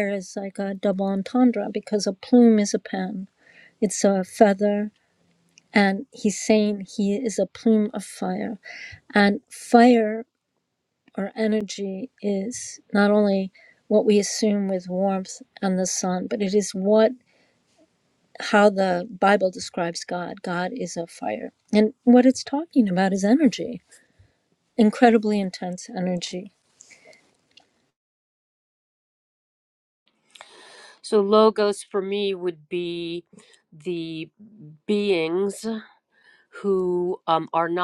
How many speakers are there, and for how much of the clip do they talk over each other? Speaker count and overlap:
2, no overlap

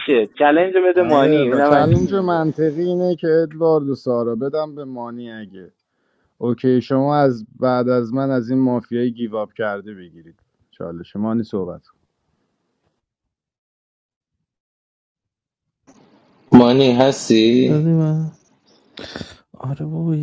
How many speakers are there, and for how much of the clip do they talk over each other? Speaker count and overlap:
4, about 8%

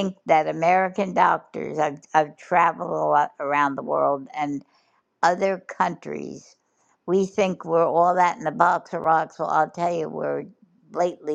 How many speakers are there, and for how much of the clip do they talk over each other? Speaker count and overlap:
1, no overlap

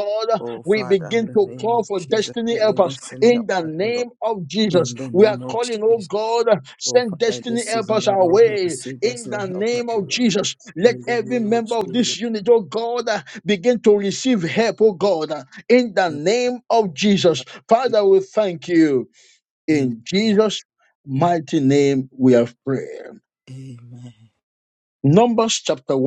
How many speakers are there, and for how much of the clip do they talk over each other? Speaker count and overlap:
2, about 41%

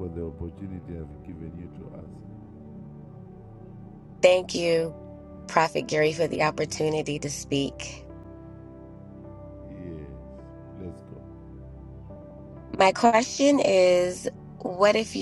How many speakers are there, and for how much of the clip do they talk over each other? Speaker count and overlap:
2, no overlap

